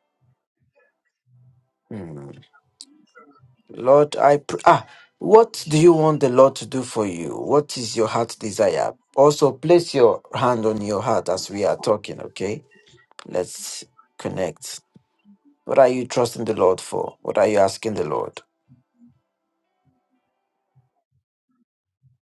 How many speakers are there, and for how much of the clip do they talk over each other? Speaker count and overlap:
1, no overlap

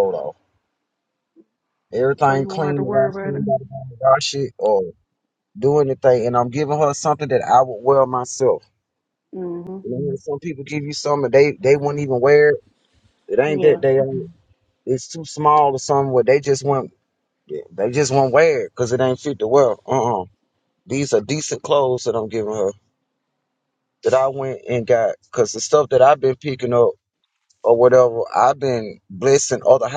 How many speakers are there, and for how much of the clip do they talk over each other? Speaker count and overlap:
2, about 5%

